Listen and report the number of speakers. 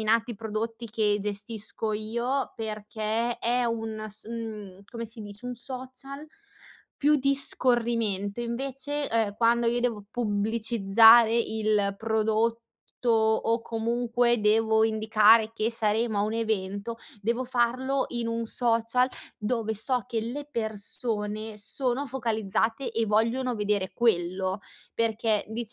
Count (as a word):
one